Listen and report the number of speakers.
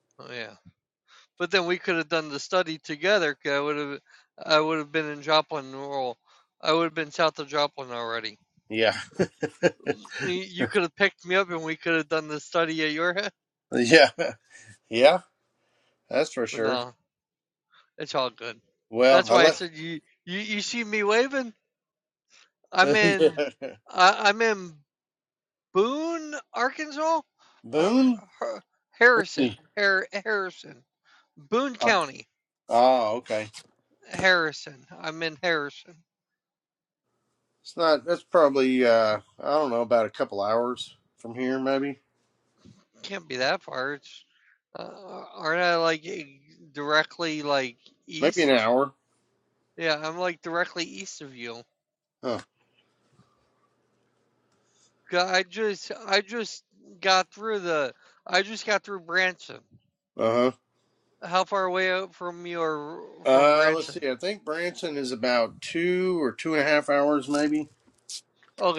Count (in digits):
2